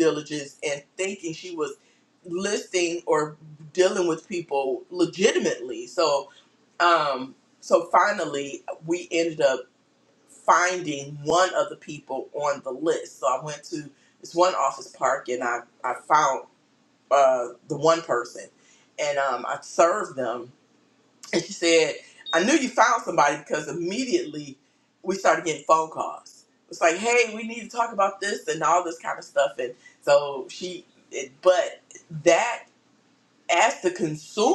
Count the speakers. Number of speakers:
one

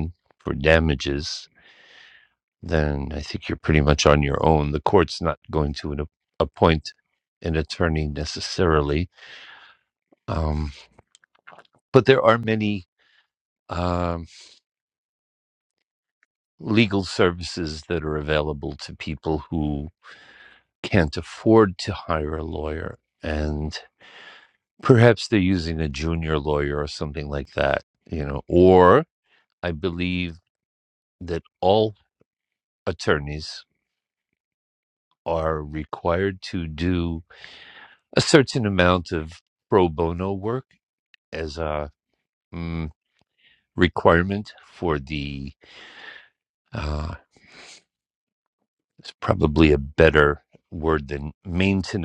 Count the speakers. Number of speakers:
one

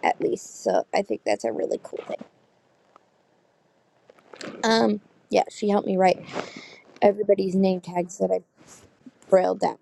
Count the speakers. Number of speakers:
one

